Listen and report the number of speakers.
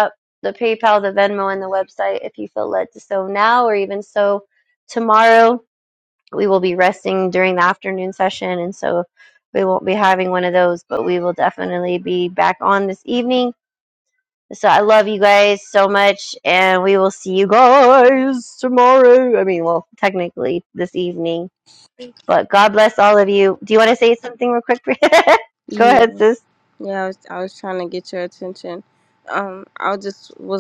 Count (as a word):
two